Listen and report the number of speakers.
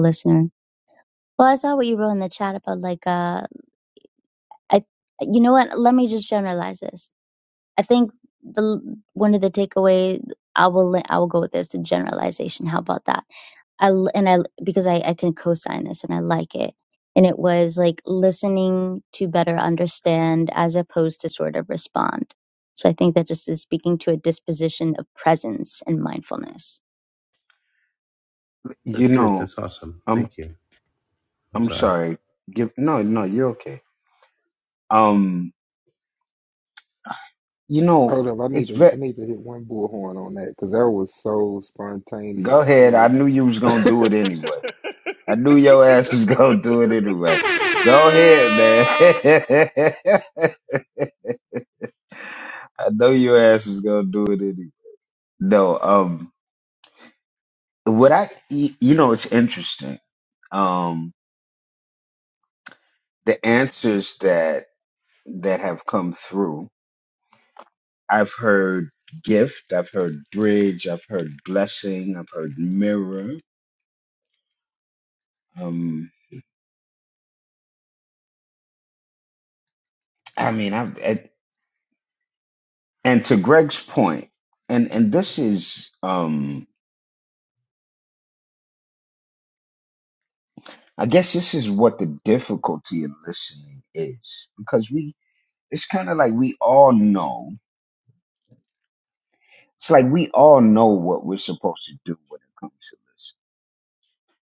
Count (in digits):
4